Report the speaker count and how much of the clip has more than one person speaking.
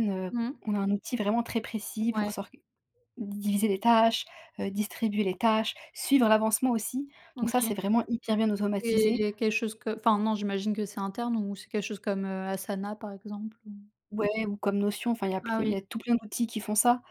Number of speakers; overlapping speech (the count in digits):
2, about 10%